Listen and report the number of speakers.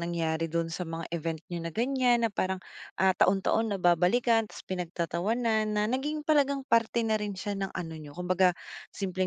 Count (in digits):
1